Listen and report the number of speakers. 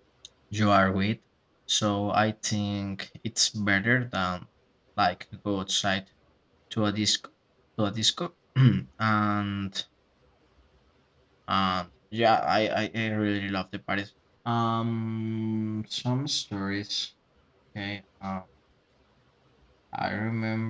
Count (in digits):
1